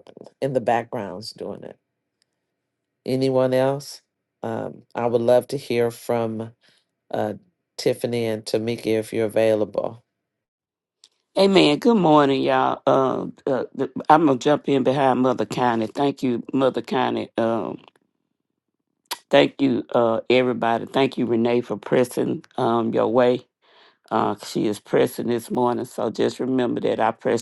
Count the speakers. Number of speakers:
two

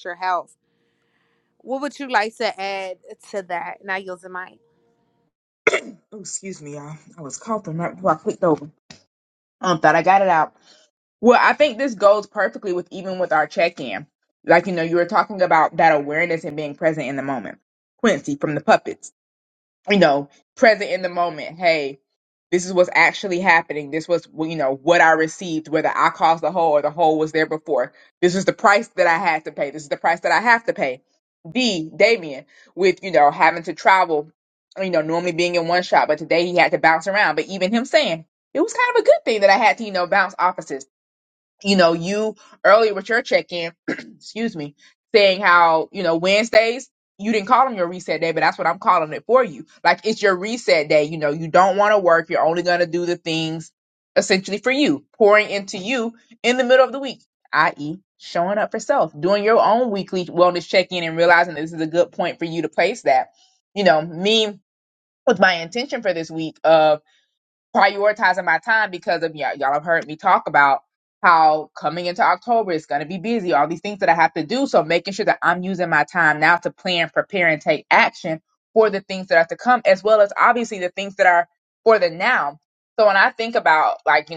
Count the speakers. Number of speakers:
two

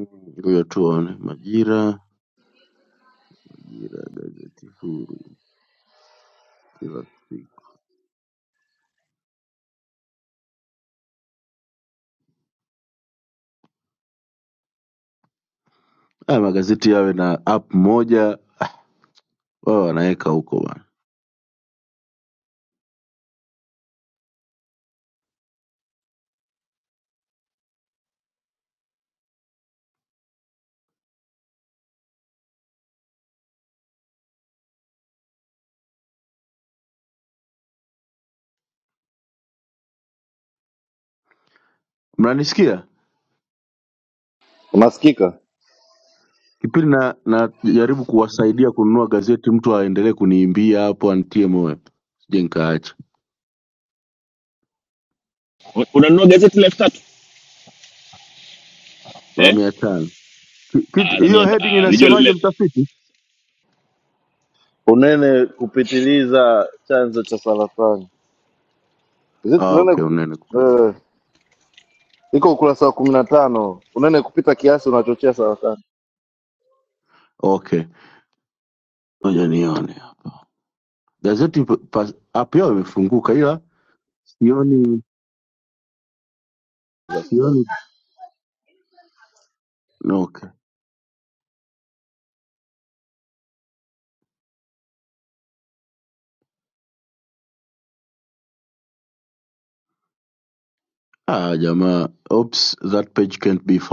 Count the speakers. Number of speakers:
three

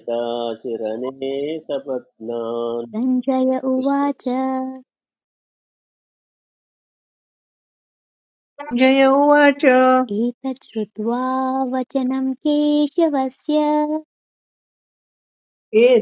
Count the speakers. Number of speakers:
three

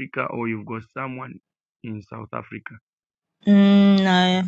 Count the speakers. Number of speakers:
two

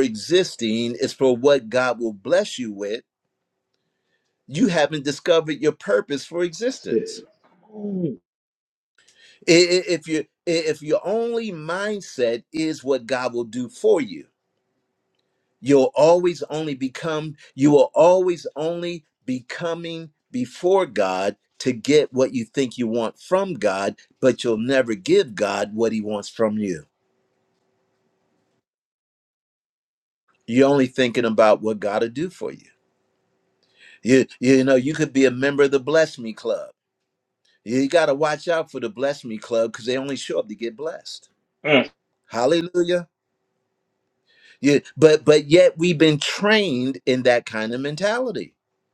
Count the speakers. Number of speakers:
two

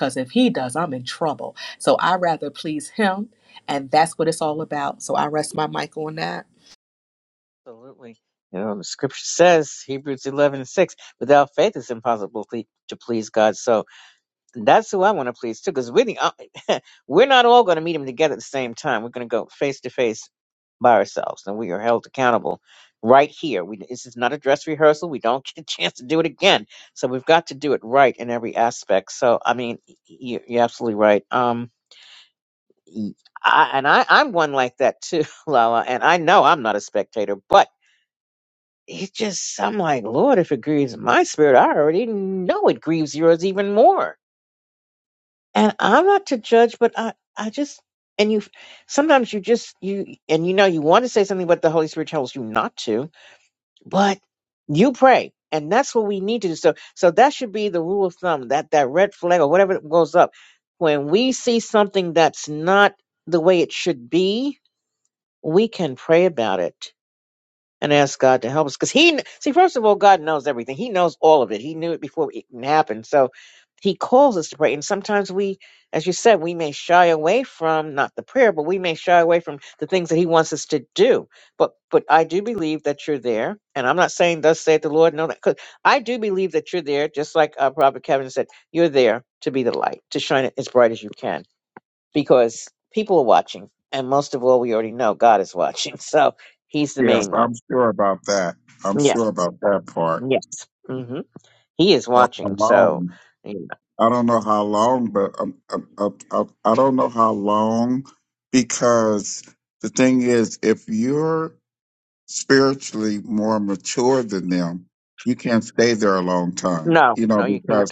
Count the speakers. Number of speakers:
three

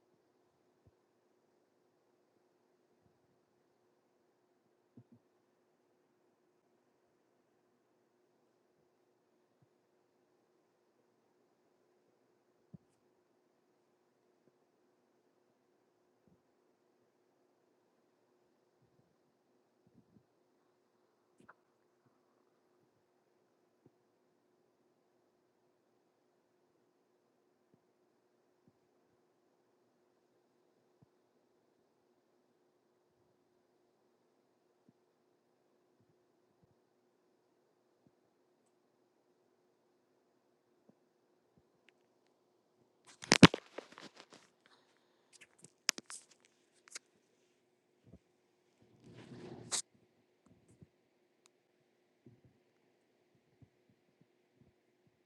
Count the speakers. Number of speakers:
zero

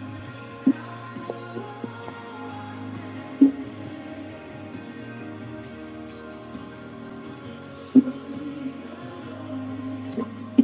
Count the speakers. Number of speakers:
zero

